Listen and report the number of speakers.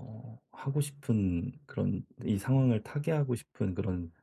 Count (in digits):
1